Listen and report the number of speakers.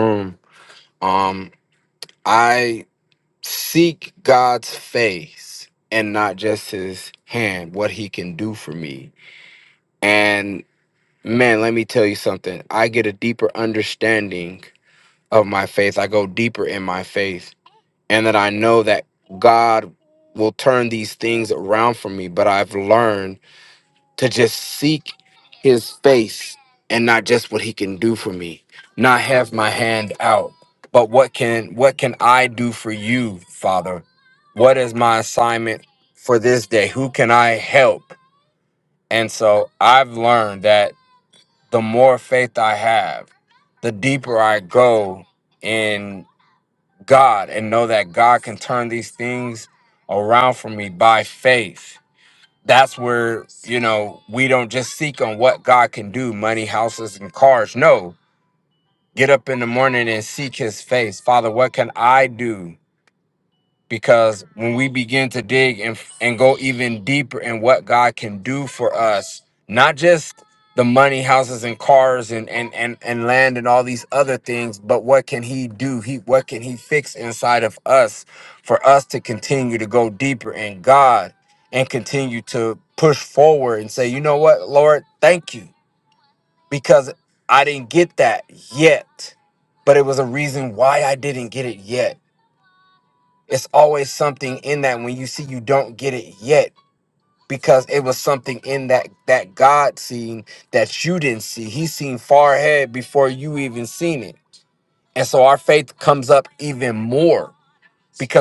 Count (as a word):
one